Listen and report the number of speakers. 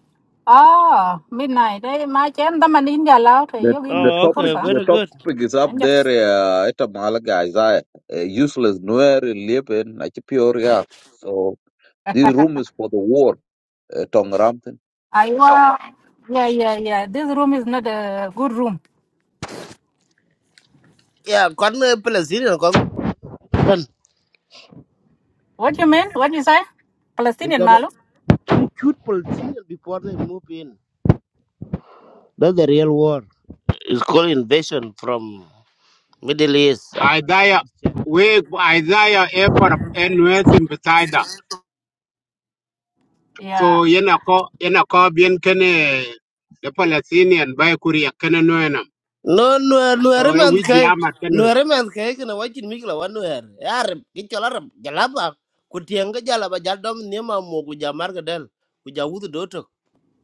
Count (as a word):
four